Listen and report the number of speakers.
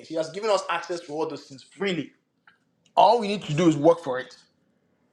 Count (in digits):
1